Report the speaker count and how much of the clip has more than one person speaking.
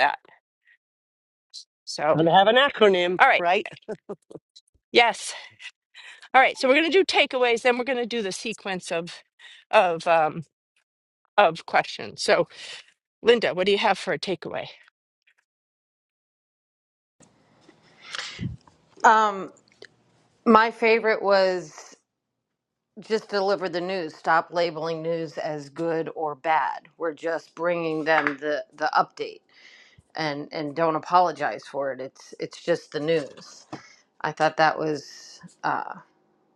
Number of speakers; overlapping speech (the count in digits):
3, about 1%